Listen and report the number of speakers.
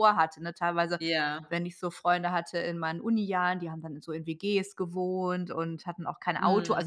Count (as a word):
two